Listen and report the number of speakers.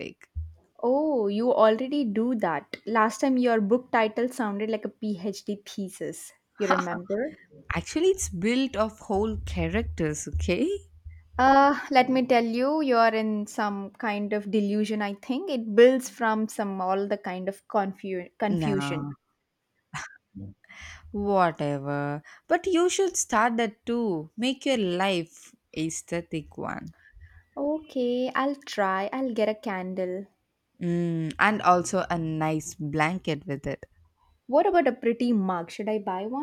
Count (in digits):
2